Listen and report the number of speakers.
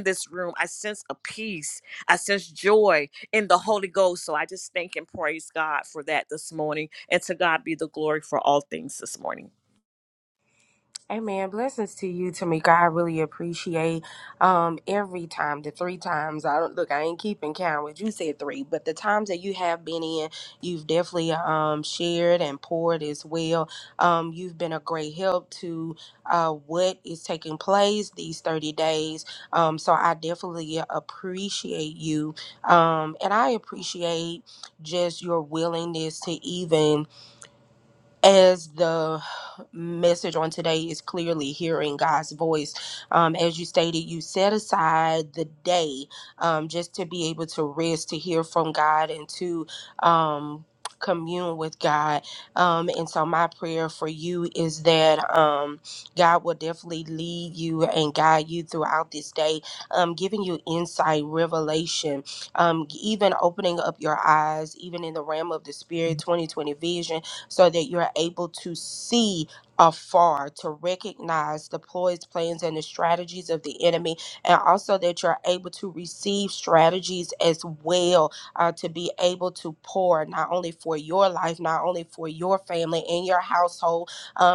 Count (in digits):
2